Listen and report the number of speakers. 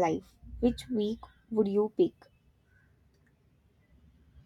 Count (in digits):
1